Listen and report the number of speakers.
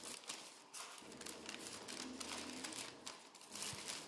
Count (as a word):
zero